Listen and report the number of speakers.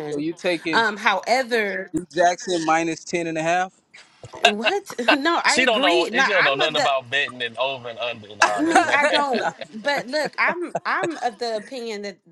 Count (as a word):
three